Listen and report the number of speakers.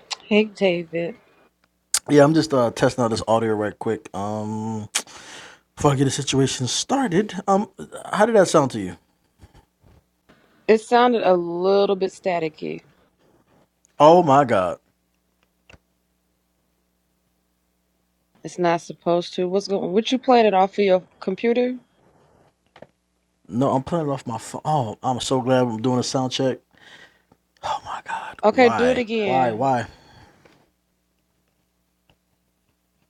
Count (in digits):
2